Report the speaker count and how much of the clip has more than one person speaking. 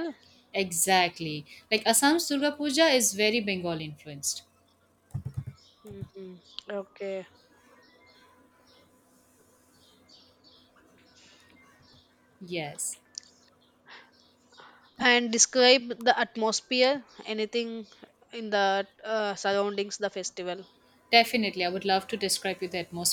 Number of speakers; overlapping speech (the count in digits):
2, no overlap